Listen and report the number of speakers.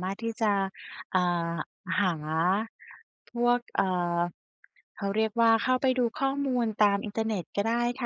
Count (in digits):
1